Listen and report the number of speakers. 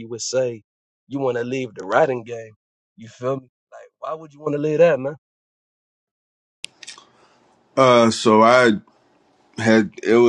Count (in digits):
2